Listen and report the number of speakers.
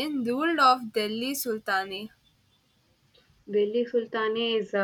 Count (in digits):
2